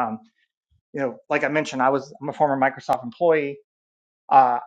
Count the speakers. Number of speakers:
one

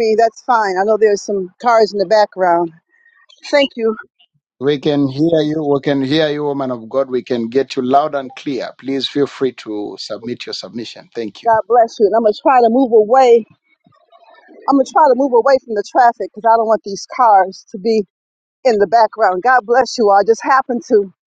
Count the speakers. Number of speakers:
two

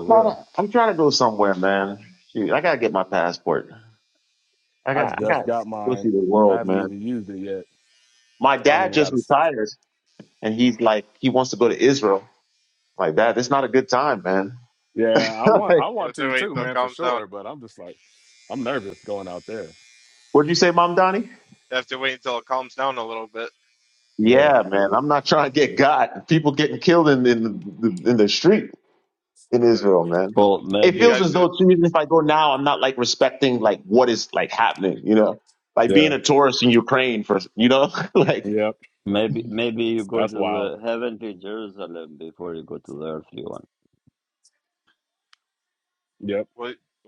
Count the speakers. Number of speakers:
four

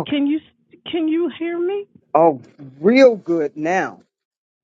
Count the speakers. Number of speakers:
two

